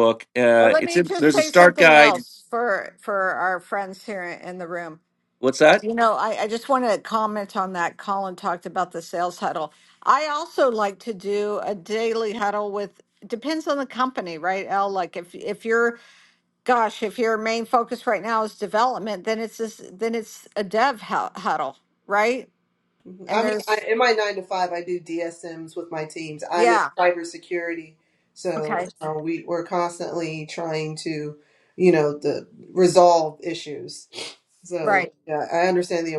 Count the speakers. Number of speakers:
three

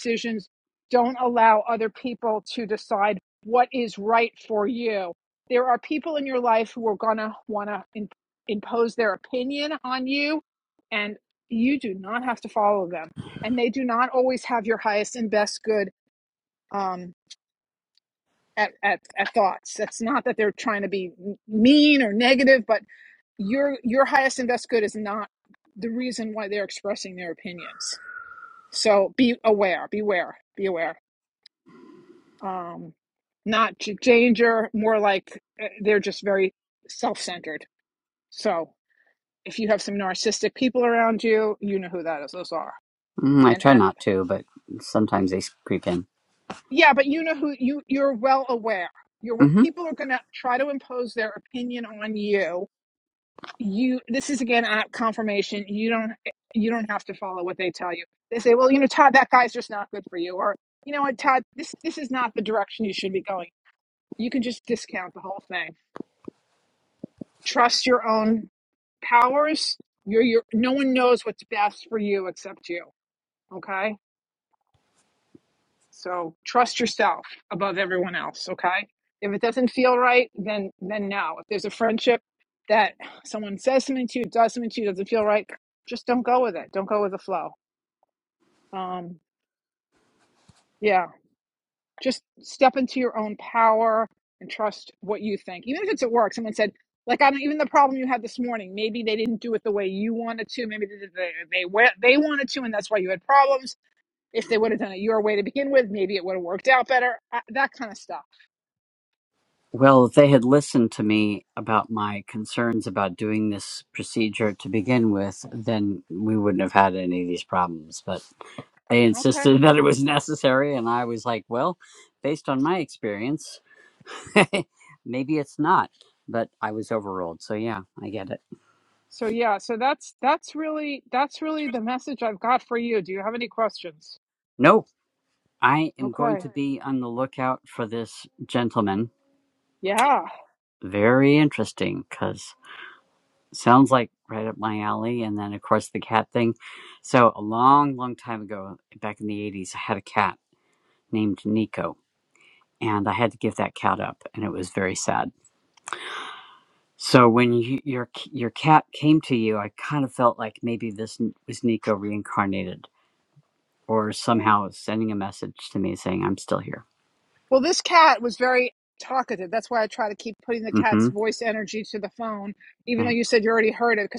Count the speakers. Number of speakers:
two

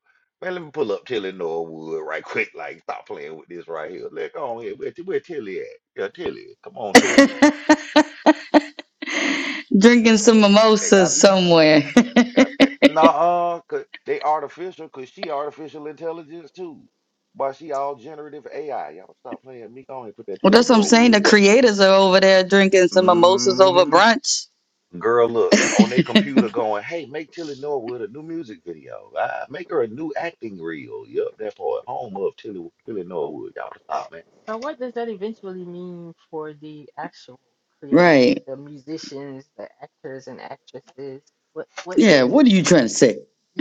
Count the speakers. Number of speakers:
three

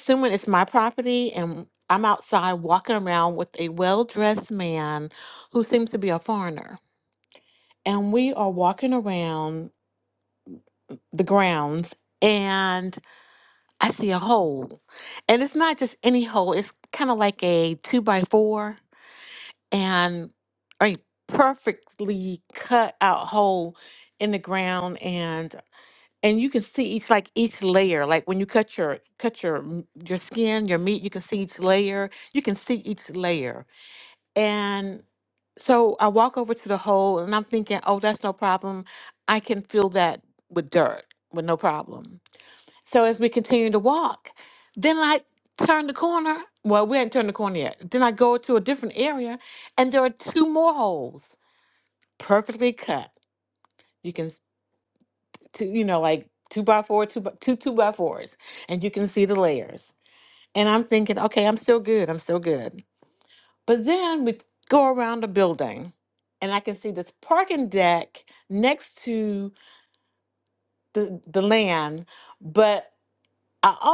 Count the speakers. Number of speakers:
one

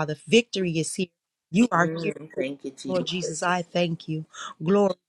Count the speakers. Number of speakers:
two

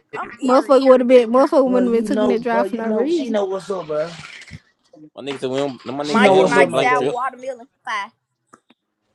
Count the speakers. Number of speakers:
four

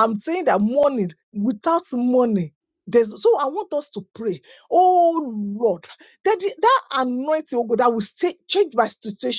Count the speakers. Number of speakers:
one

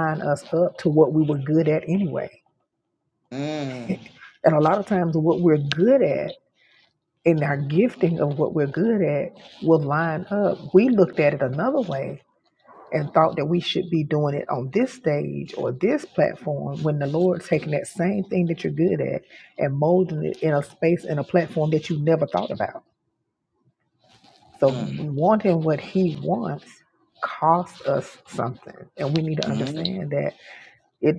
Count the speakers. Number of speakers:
two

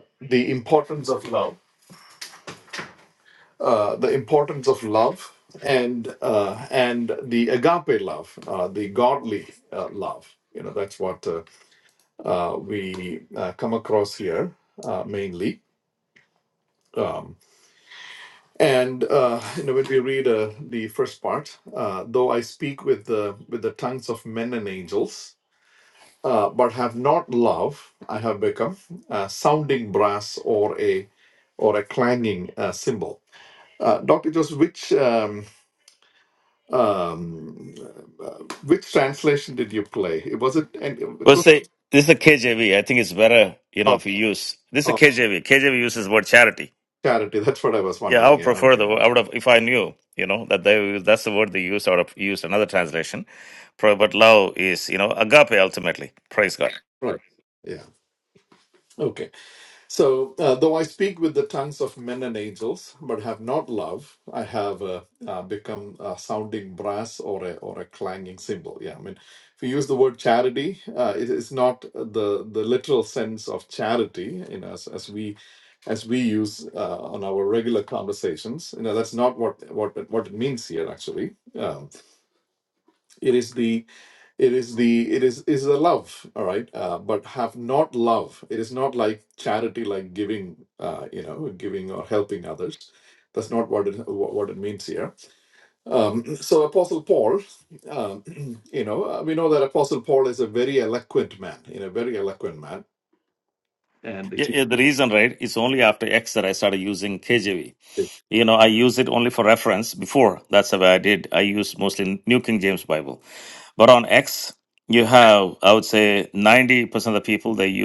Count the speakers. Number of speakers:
two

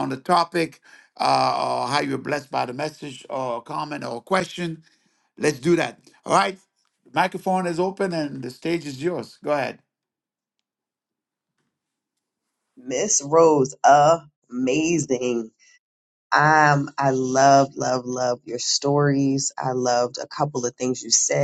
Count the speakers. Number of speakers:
two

